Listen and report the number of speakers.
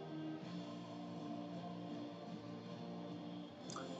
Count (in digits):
0